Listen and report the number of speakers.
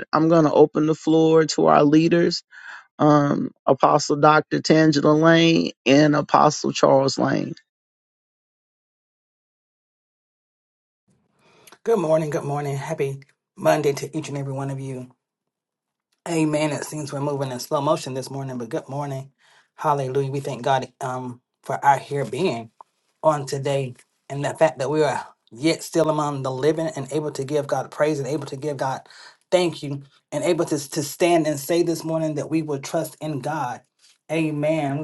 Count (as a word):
two